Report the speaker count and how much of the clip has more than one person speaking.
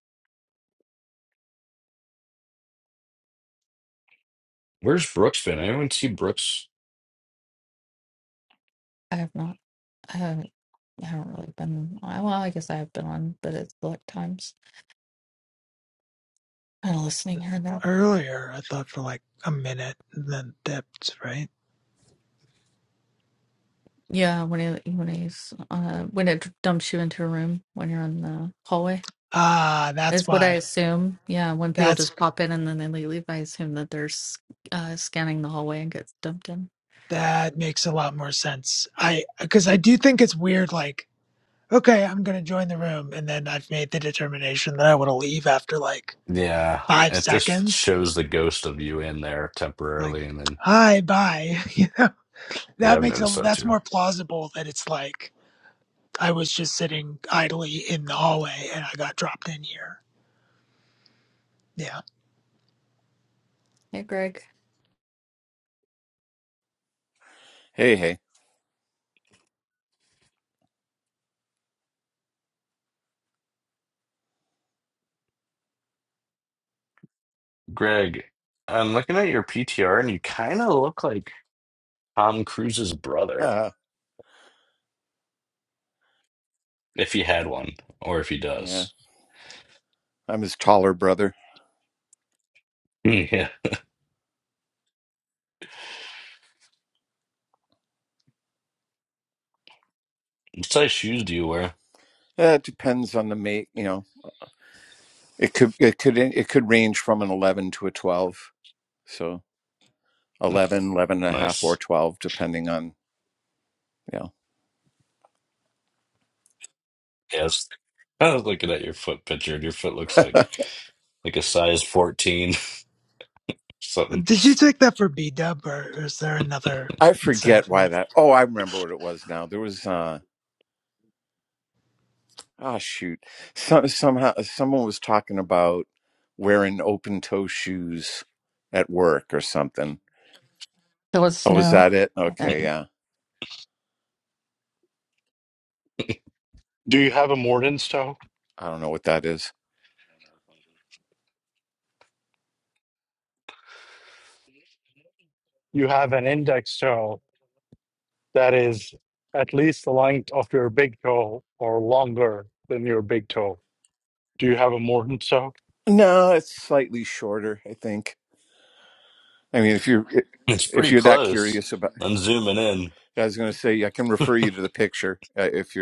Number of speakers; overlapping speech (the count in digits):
5, about 3%